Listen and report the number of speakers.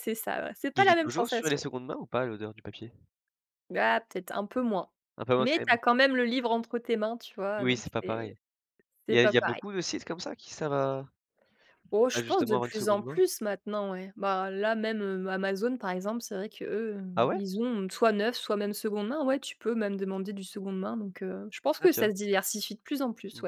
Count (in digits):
2